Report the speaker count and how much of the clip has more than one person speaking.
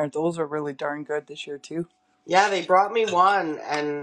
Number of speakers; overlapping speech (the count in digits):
2, no overlap